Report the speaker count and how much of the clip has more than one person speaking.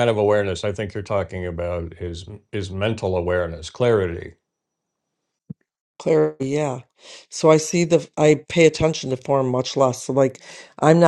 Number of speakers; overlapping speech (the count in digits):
2, no overlap